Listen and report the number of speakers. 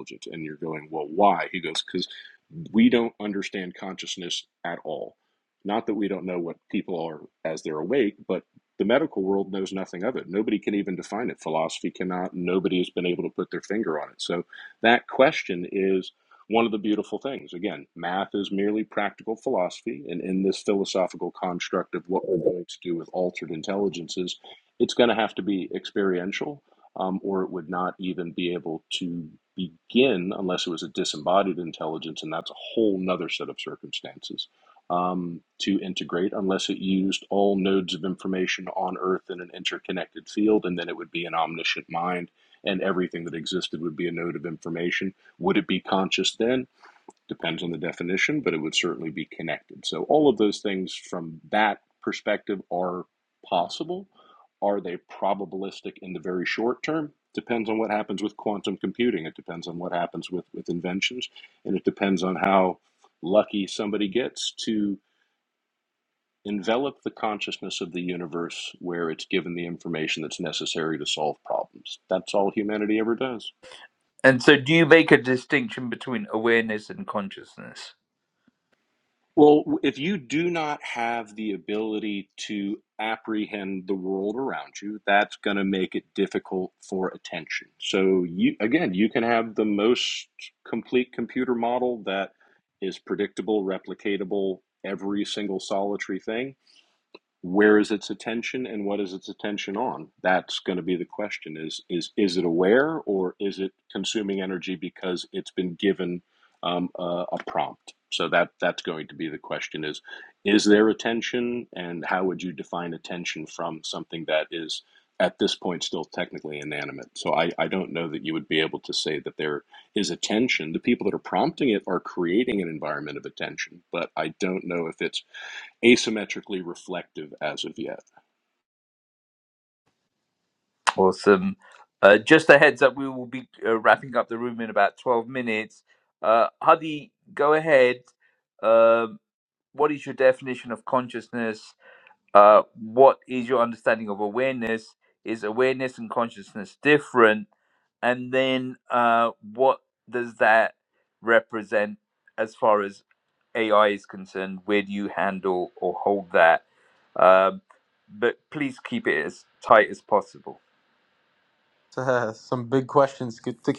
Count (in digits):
3